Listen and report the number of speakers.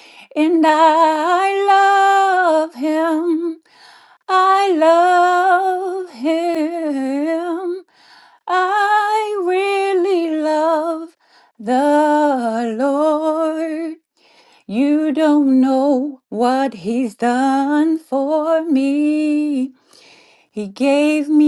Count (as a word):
one